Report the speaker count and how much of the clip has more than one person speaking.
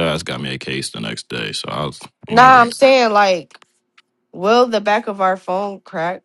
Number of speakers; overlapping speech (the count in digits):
2, about 6%